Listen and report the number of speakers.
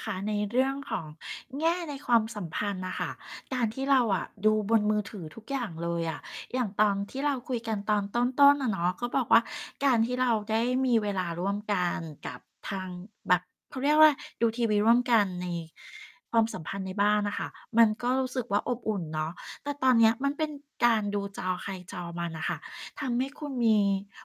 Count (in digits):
1